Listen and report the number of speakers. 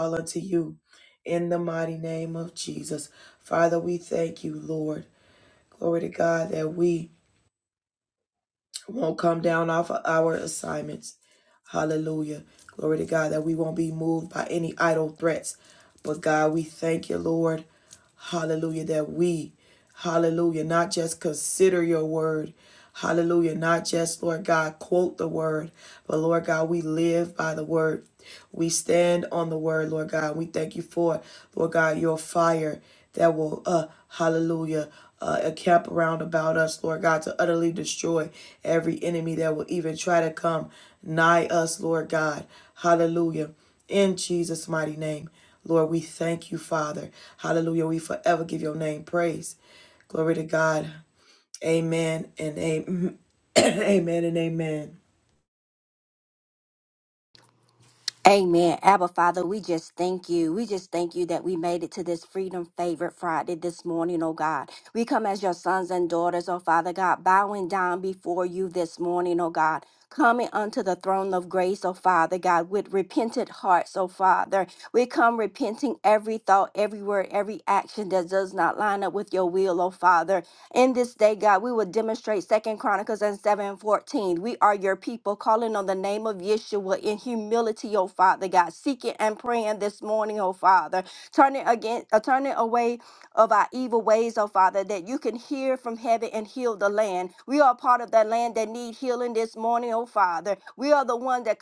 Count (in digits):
2